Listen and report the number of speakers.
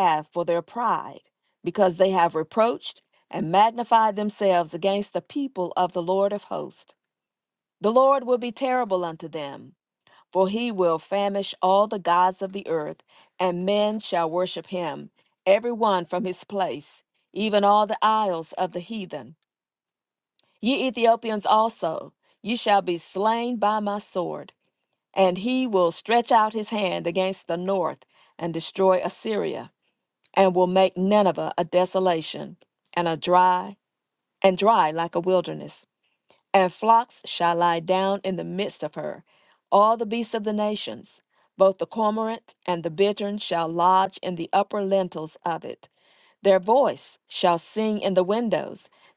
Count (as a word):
one